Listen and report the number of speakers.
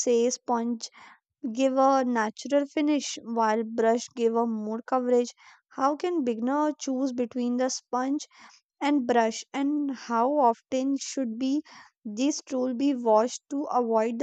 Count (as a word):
one